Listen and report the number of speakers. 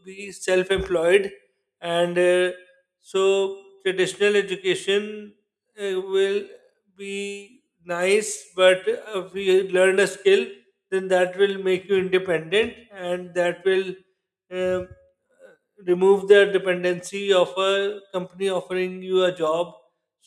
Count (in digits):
1